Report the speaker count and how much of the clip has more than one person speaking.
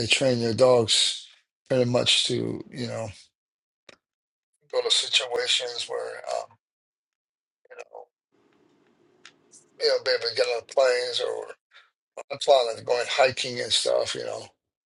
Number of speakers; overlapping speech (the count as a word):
one, no overlap